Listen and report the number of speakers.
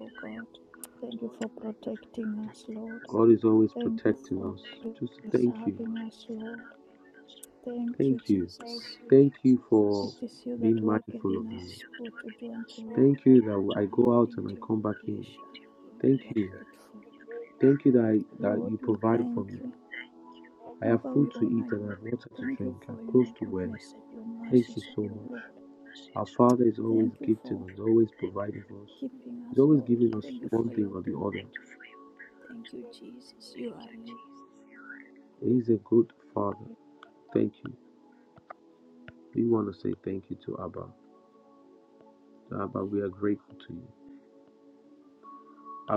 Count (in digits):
2